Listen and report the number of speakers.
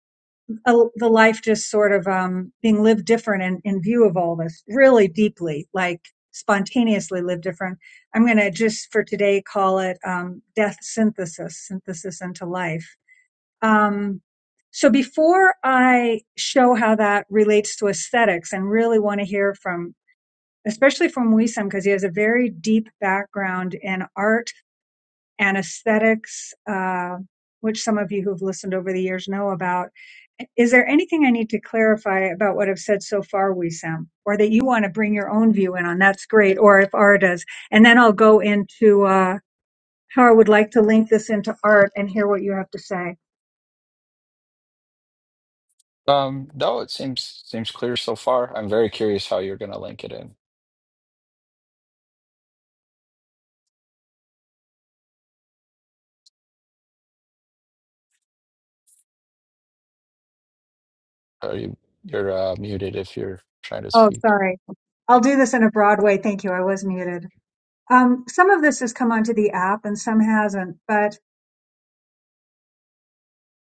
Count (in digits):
2